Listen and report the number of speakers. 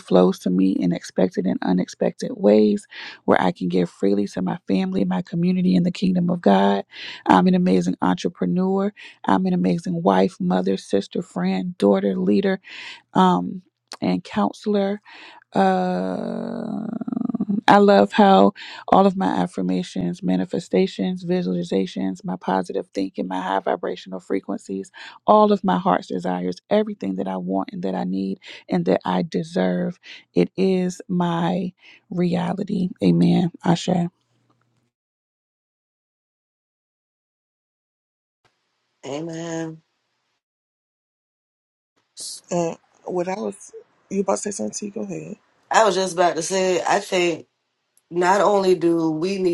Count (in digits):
3